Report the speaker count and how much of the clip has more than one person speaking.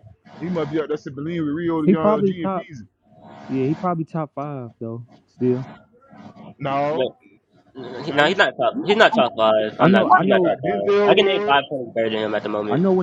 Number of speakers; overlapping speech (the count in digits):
3, about 24%